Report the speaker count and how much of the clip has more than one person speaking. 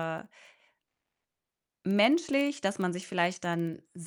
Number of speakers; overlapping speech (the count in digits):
1, no overlap